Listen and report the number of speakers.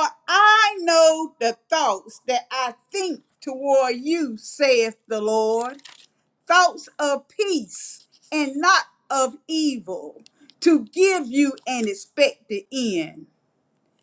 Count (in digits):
1